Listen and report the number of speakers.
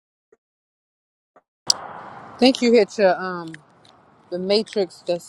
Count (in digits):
1